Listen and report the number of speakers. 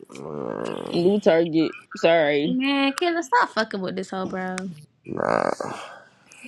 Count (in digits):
3